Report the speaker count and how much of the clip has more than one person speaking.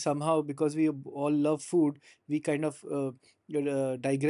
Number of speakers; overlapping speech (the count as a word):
one, no overlap